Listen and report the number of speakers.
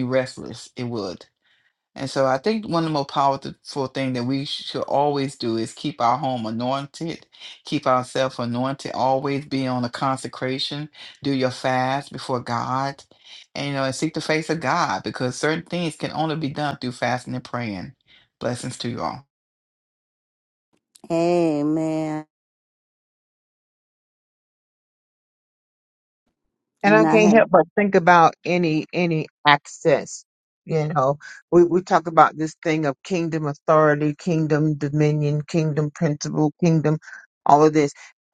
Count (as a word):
three